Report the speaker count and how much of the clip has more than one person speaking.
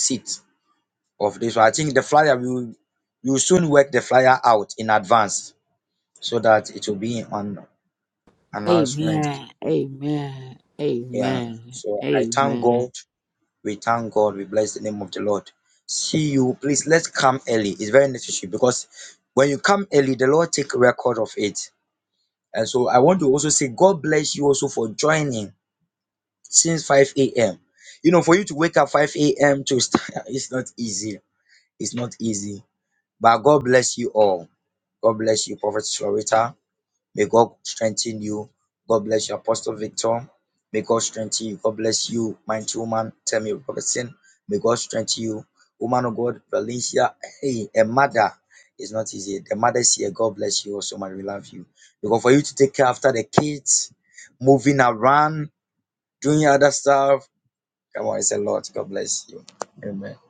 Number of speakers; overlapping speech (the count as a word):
two, about 3%